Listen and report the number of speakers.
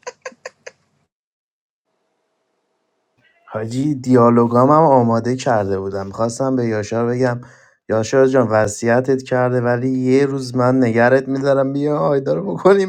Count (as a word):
one